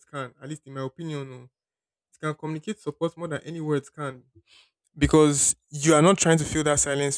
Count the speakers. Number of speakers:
one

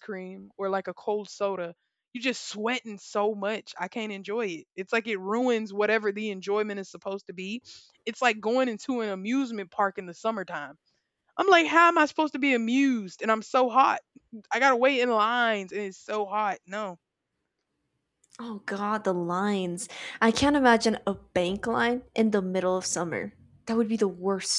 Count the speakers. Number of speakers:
two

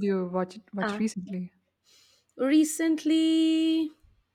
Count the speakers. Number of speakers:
two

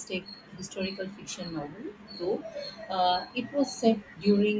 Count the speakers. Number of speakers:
one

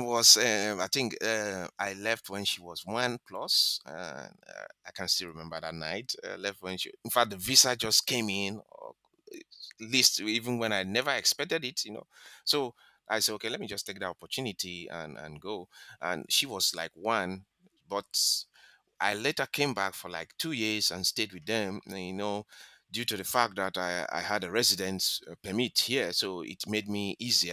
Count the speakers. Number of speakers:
one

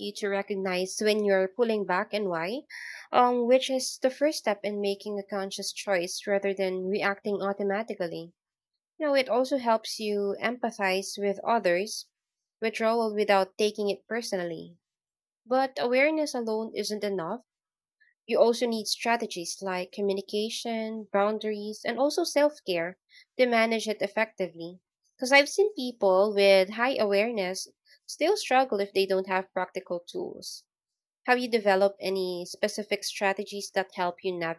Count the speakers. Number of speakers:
one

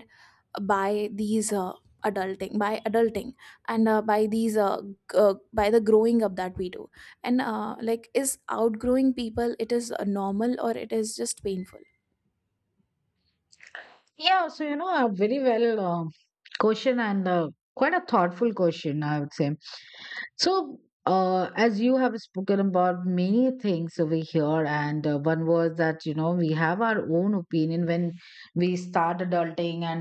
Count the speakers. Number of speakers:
two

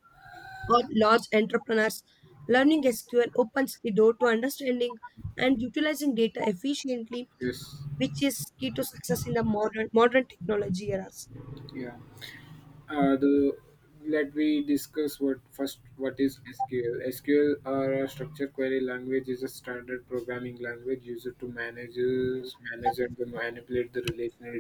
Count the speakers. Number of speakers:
two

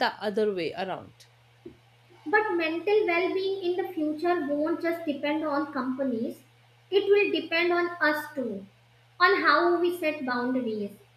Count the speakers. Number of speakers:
two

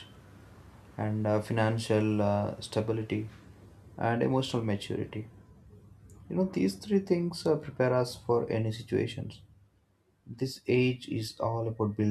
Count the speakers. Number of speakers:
one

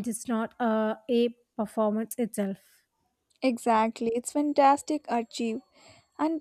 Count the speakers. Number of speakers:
two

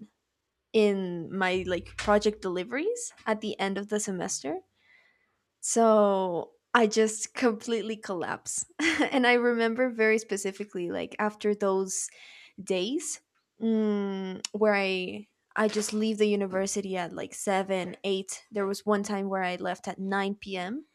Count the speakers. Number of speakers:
one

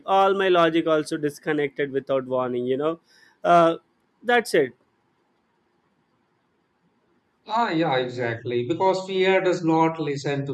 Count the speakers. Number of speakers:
two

